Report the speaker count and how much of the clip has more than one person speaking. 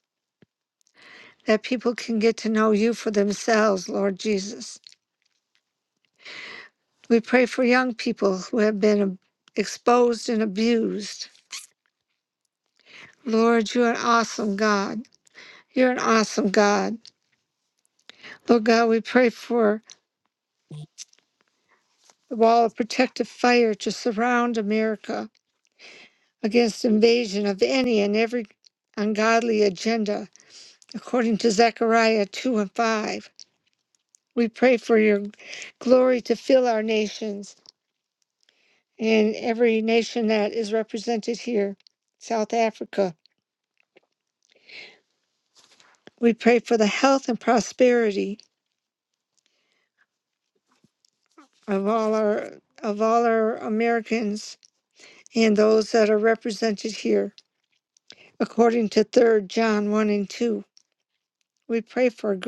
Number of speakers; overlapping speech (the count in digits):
1, no overlap